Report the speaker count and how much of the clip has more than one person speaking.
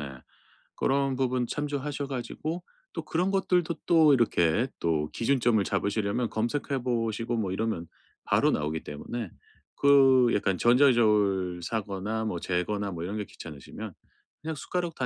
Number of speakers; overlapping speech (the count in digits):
1, no overlap